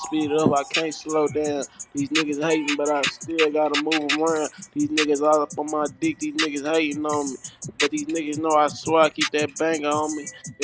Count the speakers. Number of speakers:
1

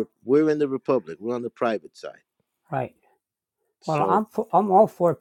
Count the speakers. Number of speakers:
2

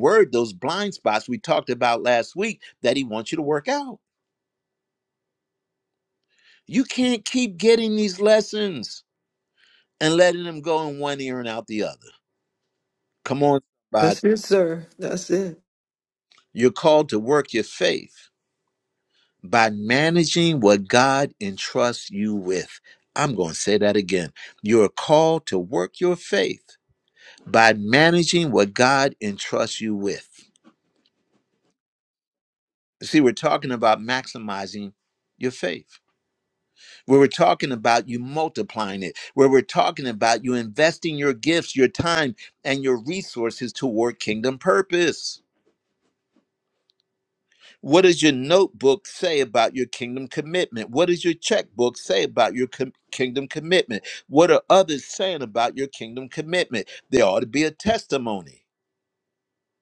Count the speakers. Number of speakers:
2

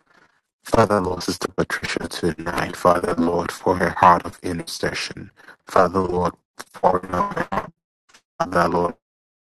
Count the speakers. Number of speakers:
1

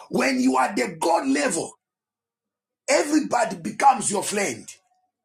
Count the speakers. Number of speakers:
1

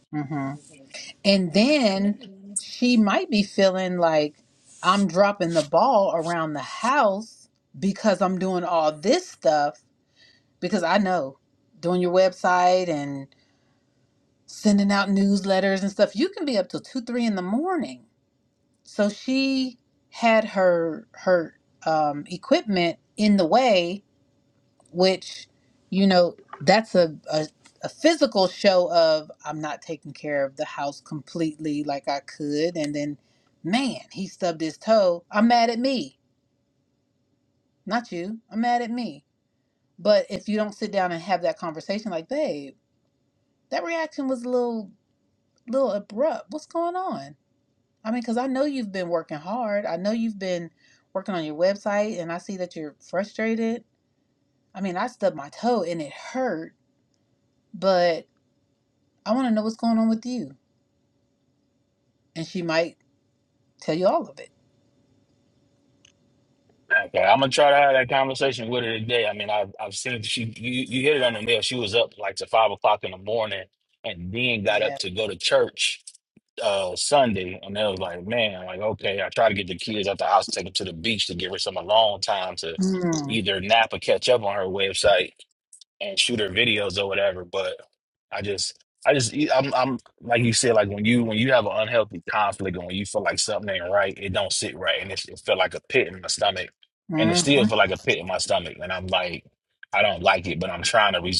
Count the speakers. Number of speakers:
2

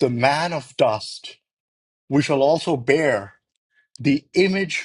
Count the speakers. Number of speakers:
1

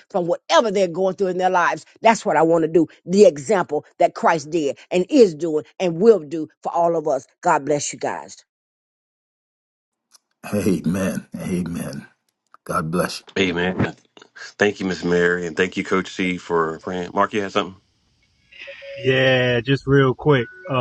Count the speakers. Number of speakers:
4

